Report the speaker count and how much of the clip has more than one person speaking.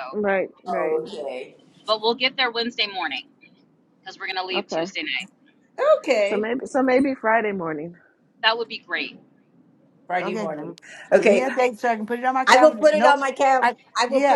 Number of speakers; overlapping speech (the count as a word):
four, about 20%